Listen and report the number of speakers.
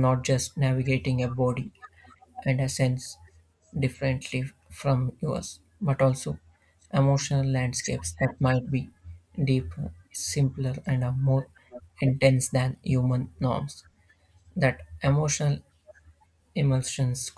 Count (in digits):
1